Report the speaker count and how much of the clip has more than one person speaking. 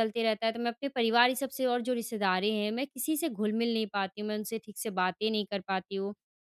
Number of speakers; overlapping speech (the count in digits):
1, no overlap